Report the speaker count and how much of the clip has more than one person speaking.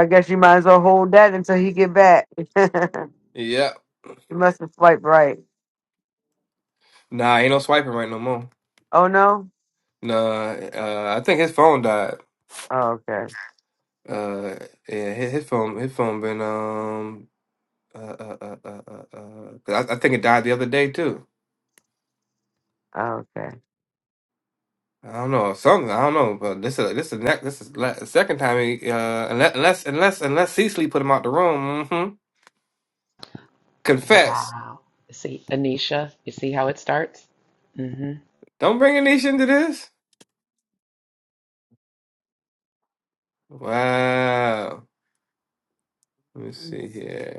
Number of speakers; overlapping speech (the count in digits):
3, about 1%